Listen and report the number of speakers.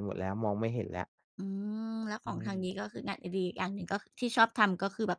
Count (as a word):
two